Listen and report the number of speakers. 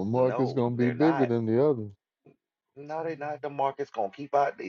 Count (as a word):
two